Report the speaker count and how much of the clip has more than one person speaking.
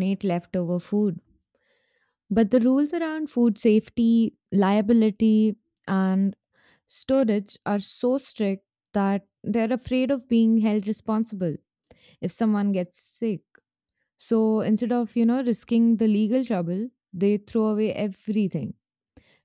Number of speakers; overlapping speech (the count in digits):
1, no overlap